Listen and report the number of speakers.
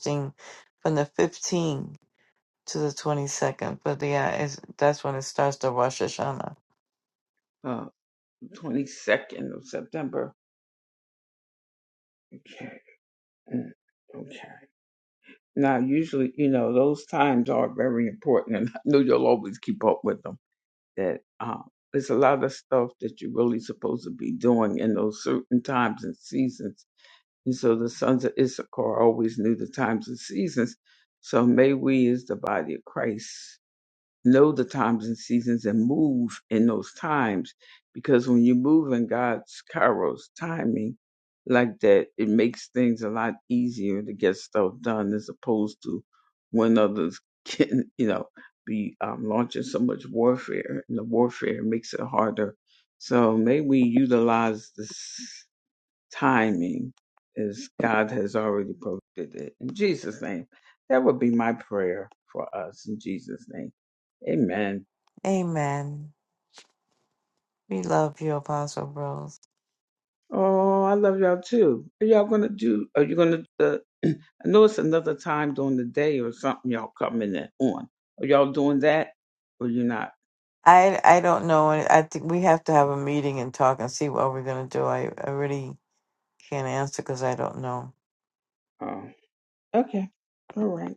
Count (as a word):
two